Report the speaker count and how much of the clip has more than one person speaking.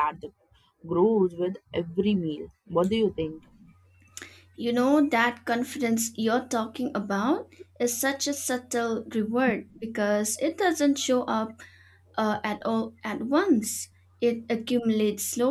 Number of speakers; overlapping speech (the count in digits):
2, no overlap